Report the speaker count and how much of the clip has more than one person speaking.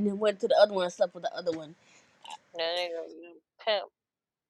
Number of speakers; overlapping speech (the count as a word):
two, no overlap